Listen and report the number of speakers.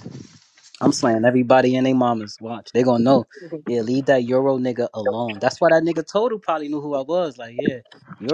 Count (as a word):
one